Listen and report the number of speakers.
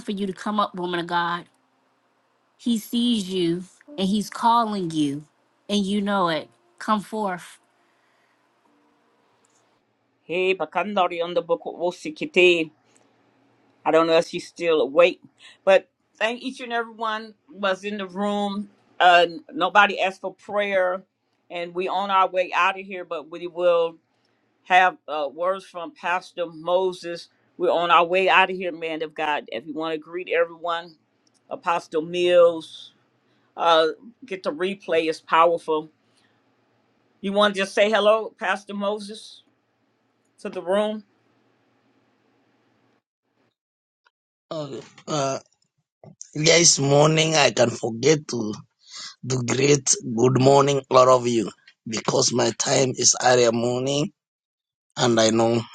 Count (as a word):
three